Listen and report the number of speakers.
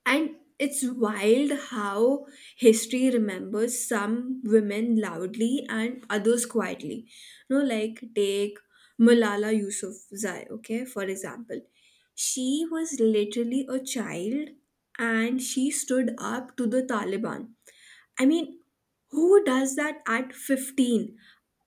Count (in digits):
1